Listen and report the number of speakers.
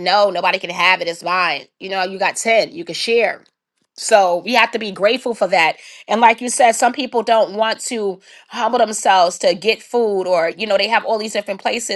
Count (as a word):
one